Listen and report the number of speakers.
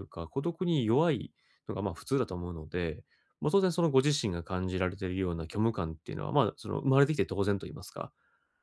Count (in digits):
1